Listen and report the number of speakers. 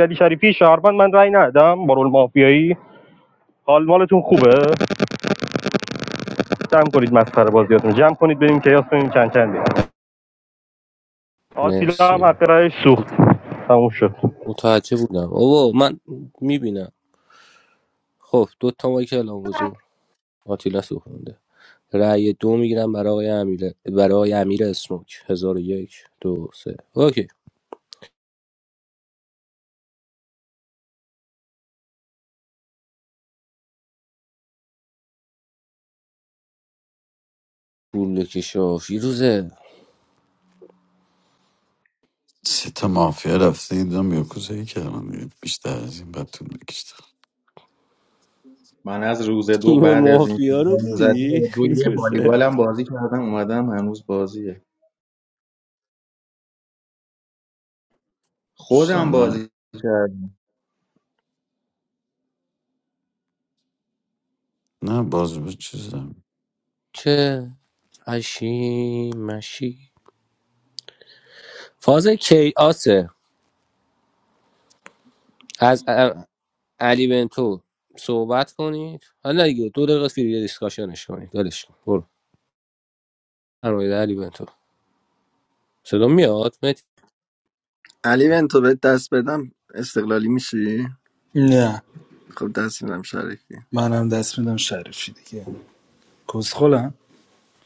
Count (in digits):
6